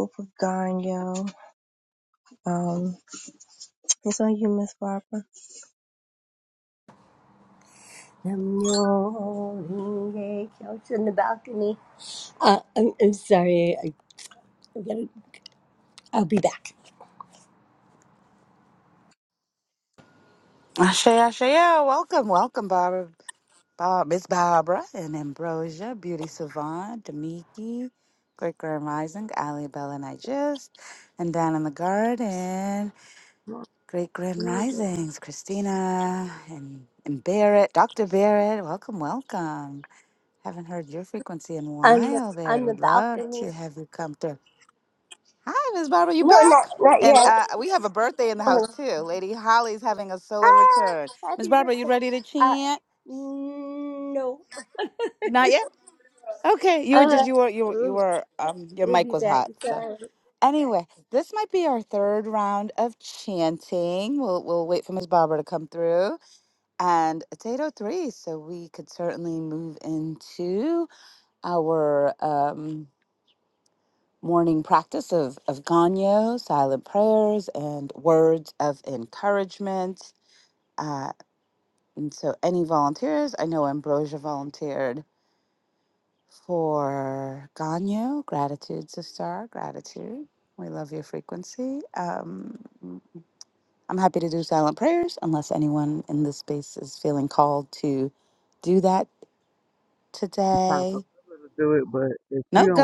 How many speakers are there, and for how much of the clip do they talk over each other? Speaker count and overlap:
four, about 7%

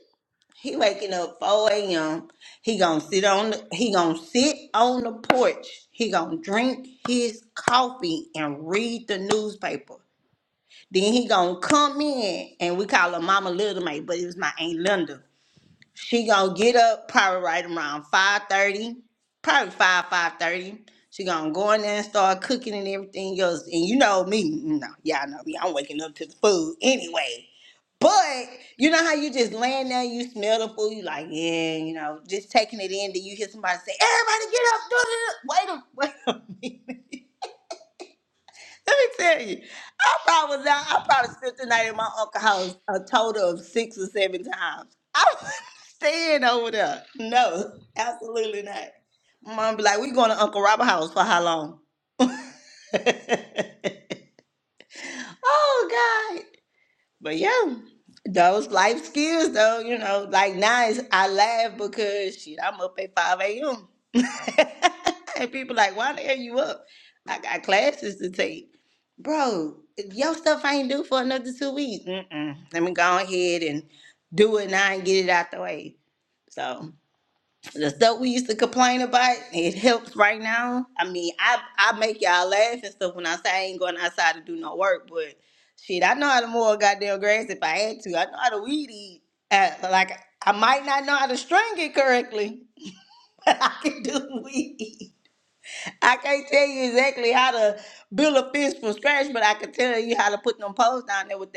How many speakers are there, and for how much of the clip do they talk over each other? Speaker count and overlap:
one, no overlap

